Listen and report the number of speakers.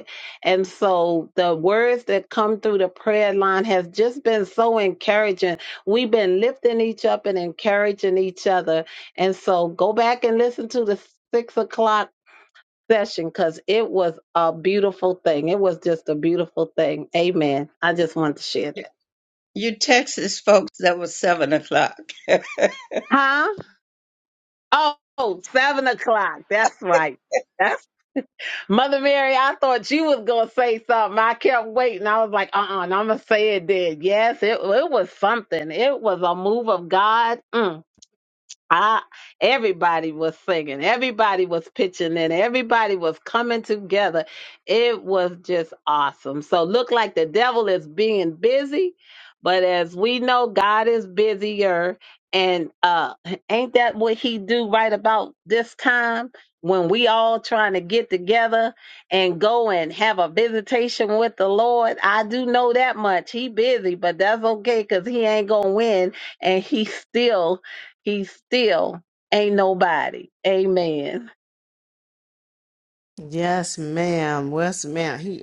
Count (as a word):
three